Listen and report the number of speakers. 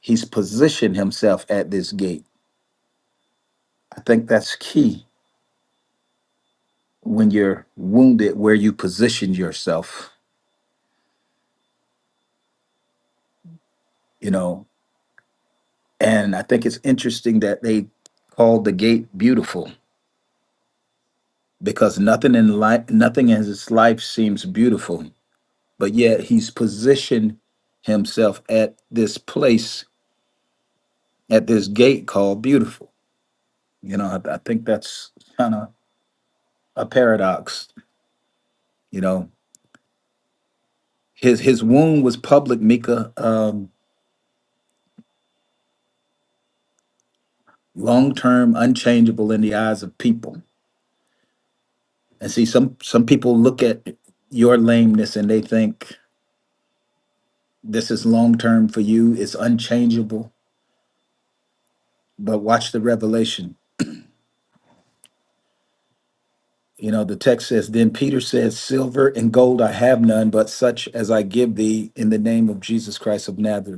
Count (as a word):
one